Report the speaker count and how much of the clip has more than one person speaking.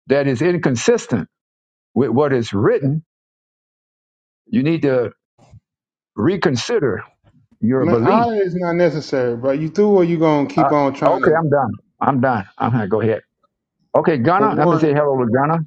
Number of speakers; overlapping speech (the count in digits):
2, about 10%